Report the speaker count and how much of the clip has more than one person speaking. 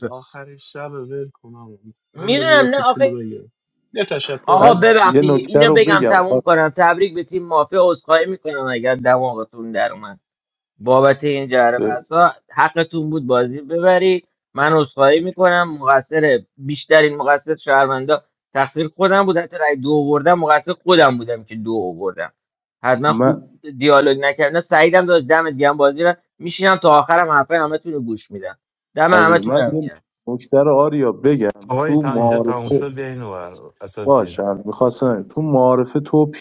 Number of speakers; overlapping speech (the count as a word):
four, about 15%